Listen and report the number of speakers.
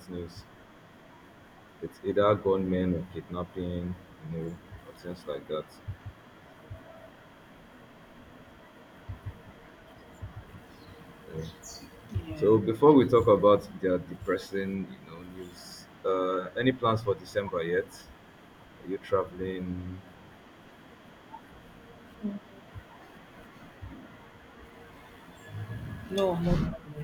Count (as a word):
two